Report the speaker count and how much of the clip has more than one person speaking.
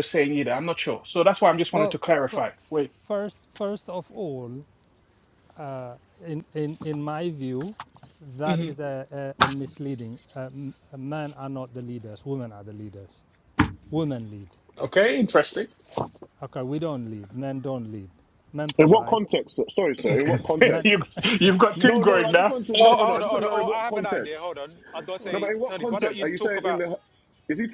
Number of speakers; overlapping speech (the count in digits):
4, about 21%